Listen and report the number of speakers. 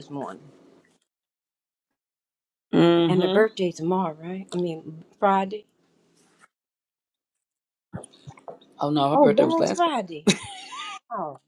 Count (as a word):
two